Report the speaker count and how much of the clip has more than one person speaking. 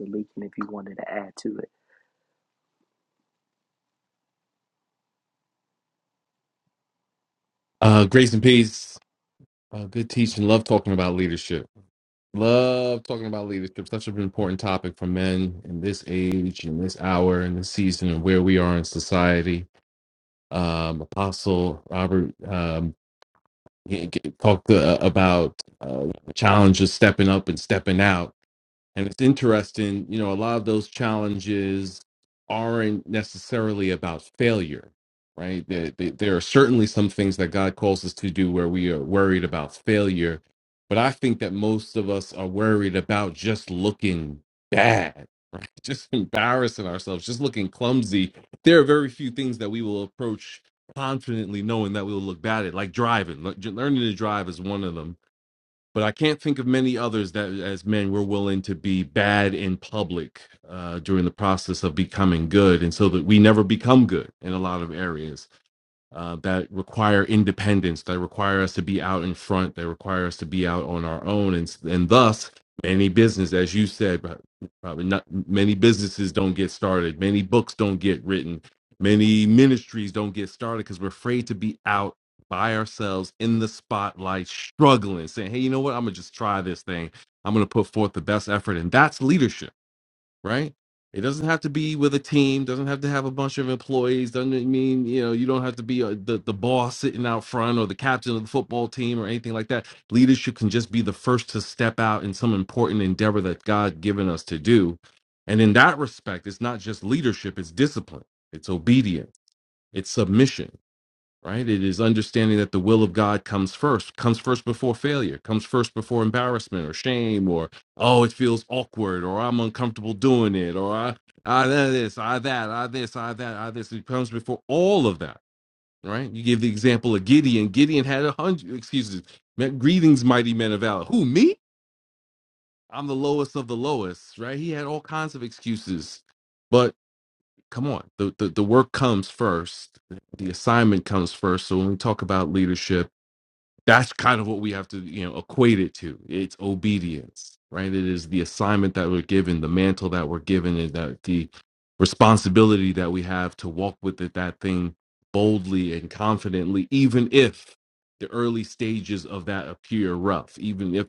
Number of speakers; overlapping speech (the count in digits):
2, no overlap